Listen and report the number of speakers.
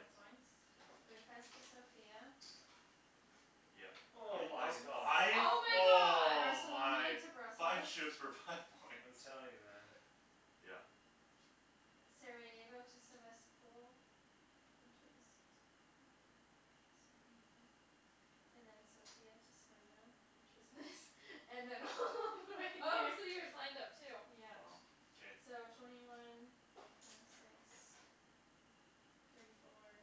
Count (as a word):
four